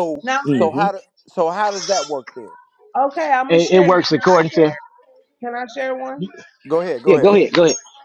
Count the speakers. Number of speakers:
3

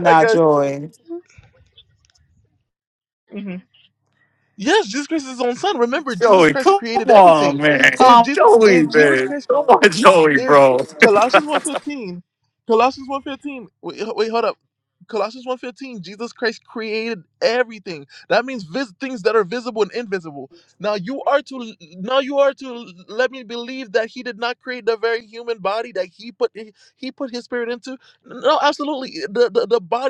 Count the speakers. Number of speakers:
3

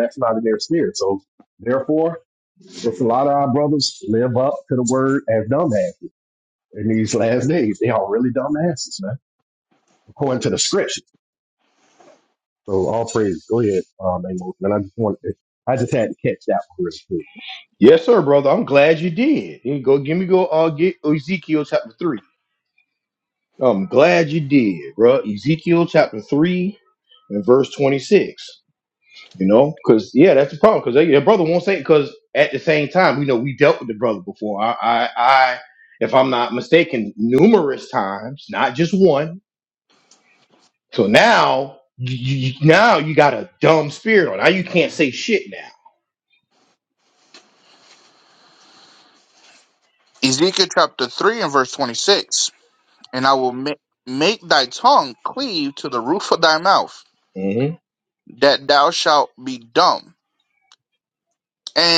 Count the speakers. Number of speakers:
3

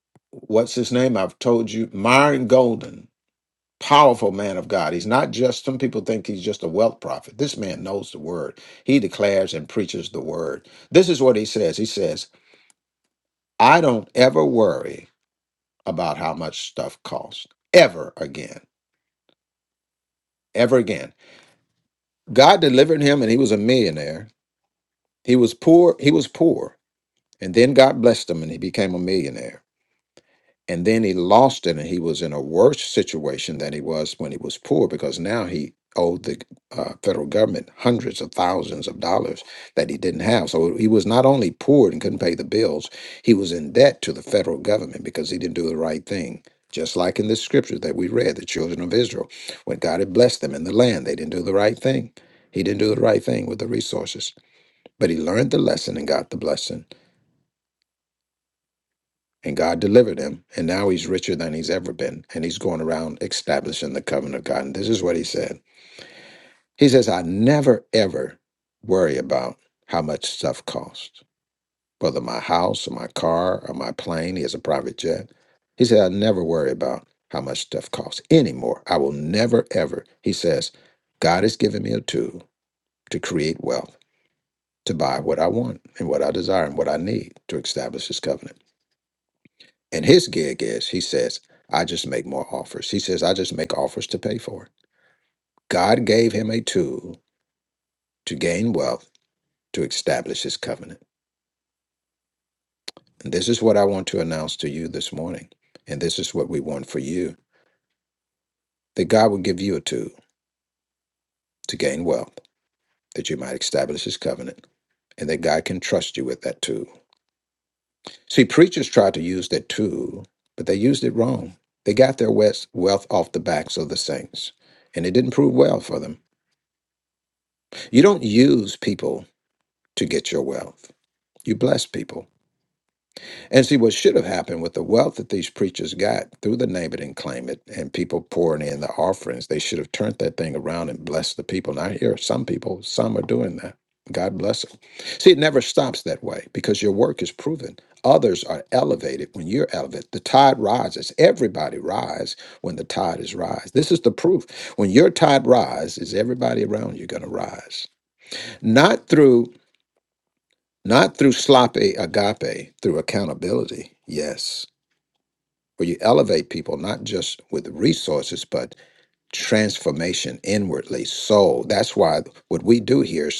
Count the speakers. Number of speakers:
1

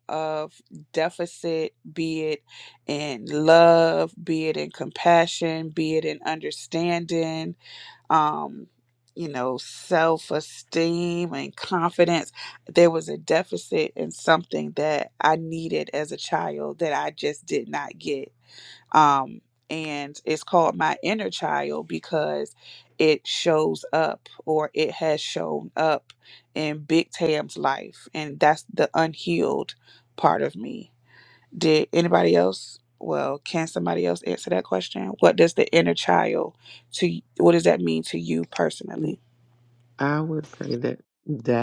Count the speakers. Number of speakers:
2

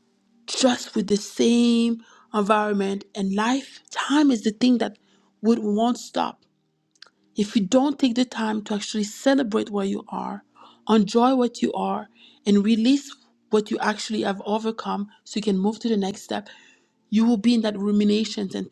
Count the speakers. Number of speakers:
1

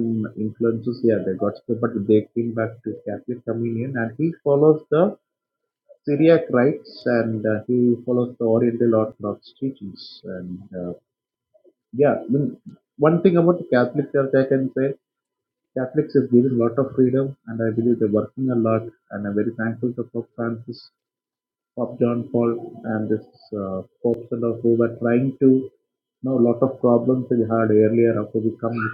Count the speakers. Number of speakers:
1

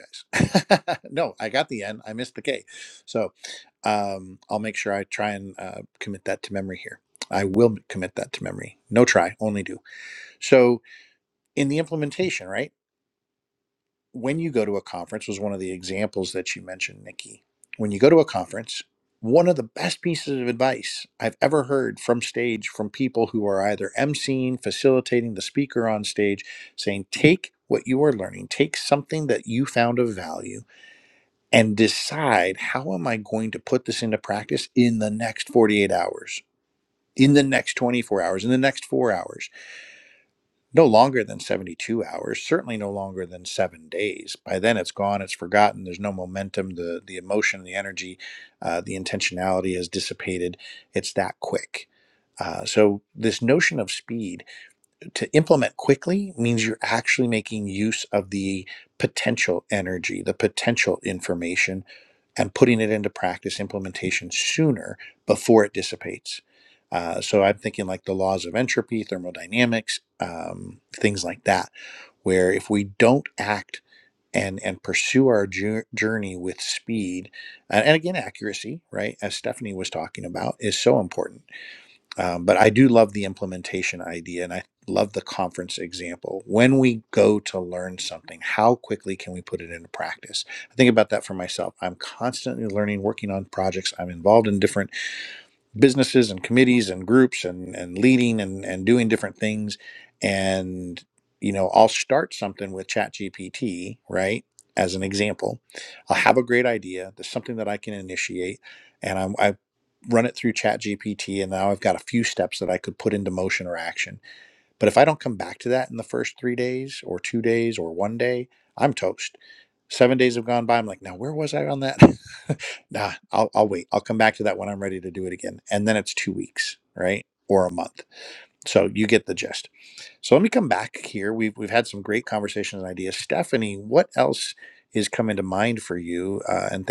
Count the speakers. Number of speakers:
1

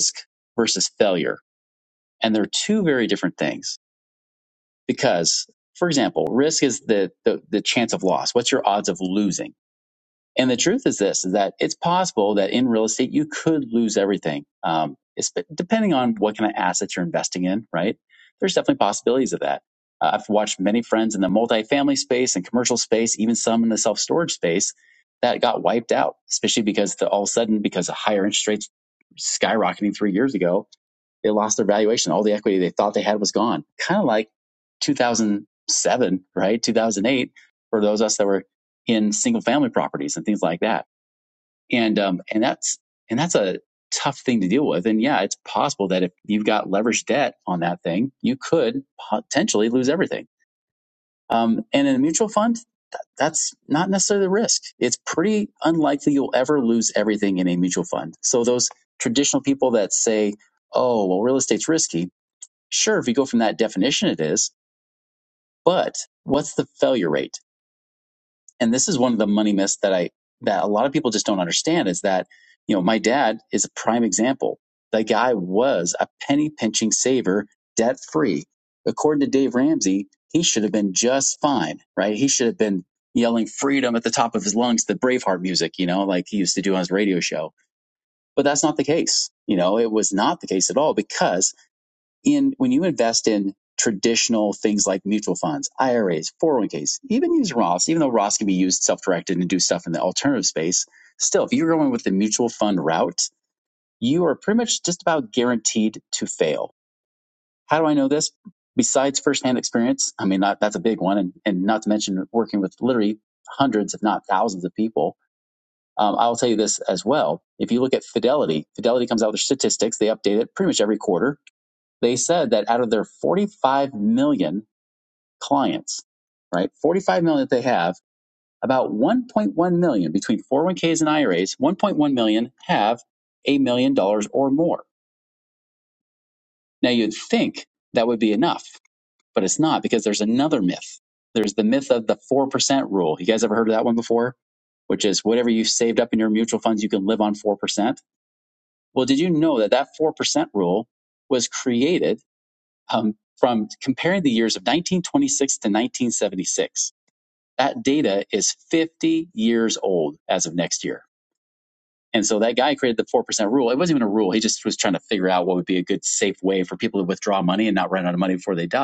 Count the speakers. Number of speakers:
1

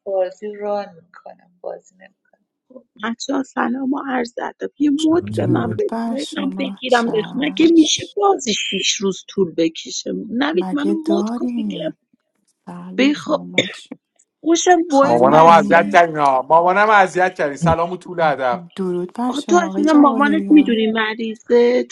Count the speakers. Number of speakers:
4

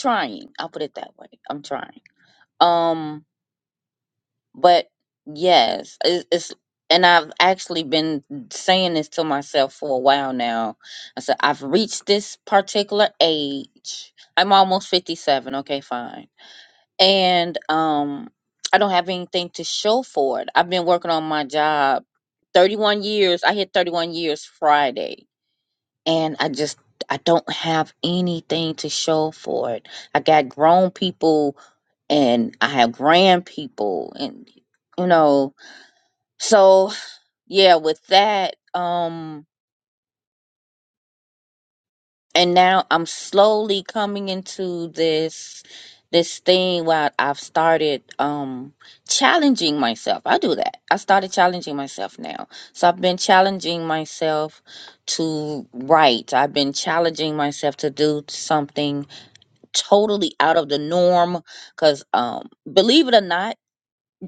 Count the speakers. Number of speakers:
1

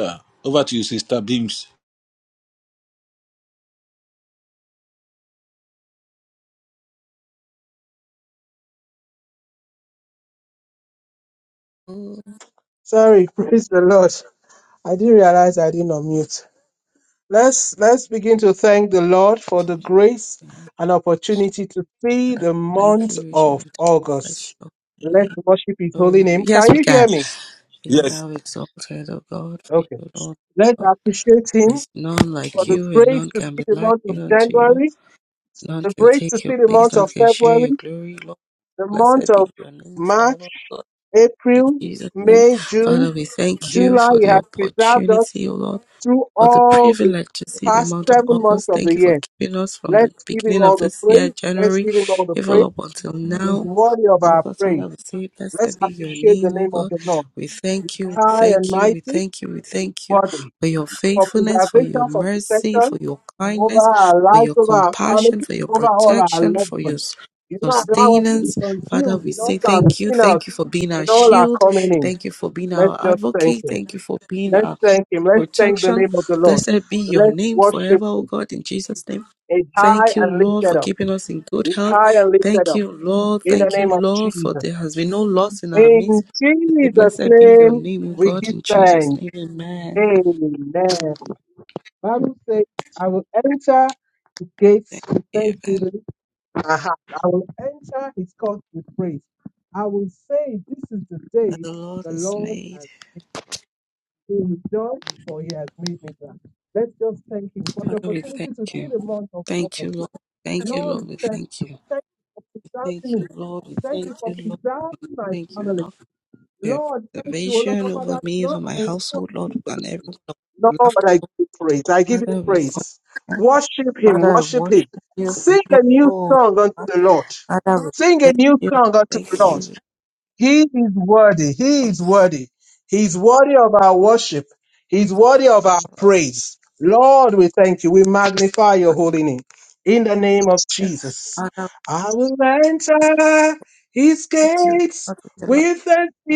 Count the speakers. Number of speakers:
3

